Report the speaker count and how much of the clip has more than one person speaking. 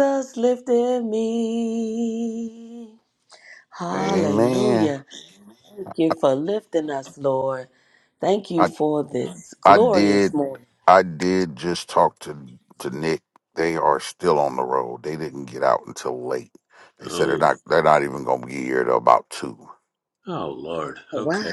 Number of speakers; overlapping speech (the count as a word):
three, about 11%